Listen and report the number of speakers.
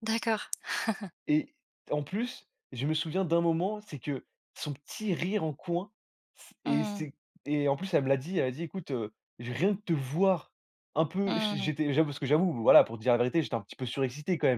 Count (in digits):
2